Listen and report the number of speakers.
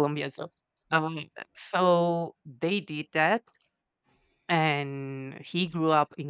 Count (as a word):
one